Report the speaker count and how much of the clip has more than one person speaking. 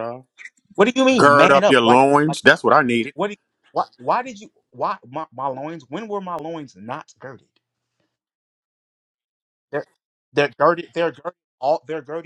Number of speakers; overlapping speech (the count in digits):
2, about 10%